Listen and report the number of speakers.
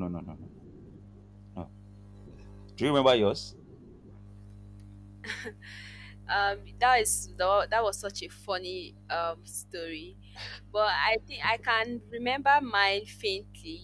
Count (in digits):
2